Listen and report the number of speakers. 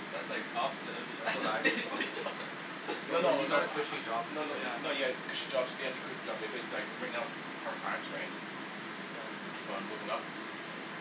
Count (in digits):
3